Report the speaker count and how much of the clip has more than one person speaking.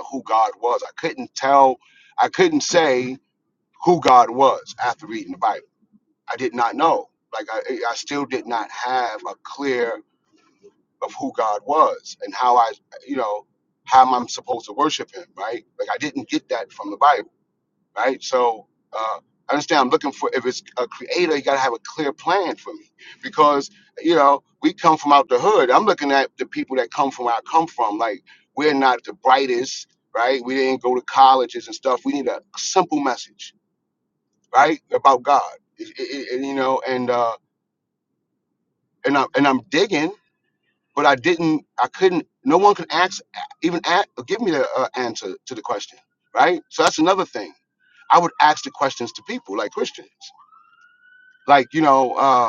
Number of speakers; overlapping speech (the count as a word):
one, no overlap